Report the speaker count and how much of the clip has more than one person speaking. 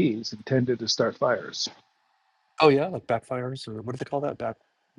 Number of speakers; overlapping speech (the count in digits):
2, no overlap